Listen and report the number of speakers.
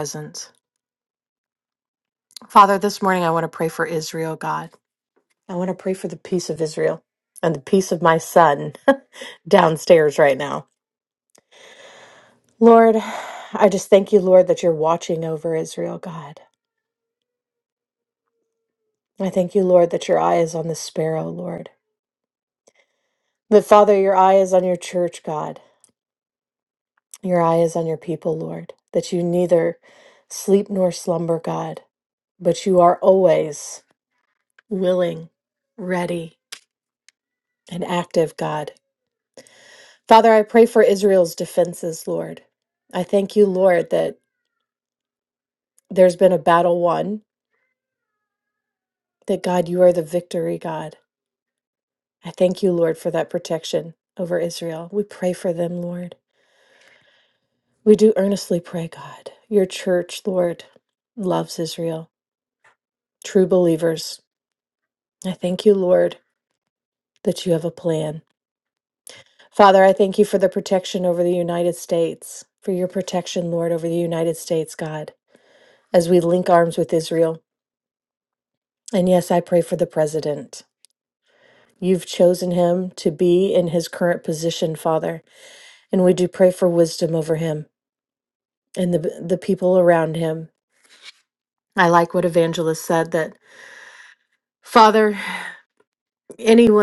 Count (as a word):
one